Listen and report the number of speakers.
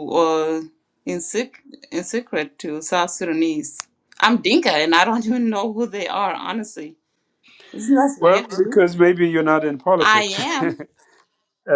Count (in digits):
2